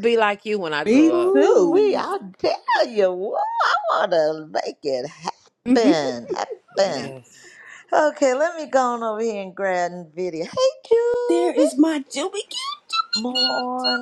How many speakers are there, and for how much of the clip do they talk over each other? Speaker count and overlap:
3, about 16%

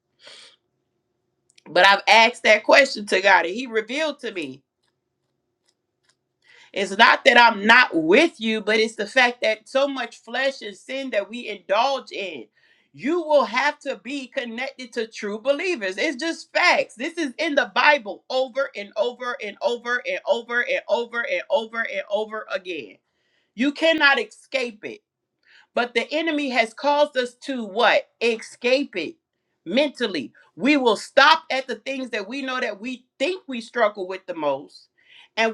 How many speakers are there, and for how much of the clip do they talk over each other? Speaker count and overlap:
1, no overlap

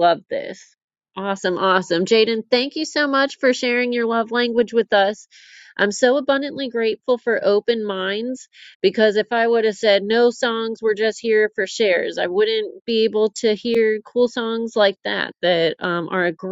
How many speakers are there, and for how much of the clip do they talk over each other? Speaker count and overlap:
1, no overlap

